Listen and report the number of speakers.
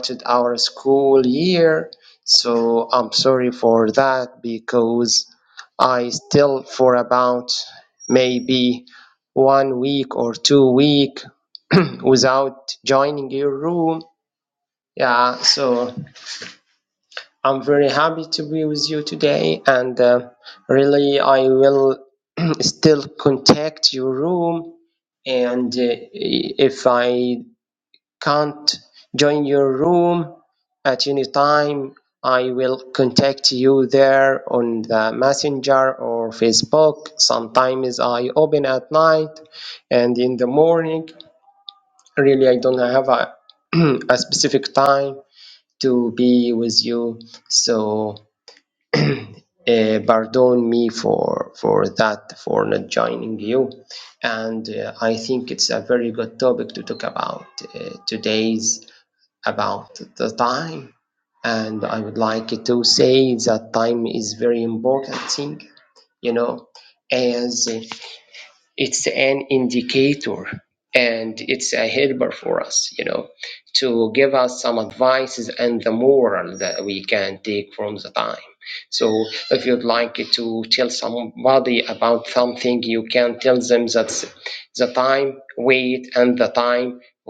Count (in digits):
1